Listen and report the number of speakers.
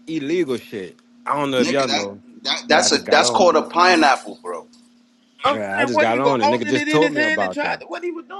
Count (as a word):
three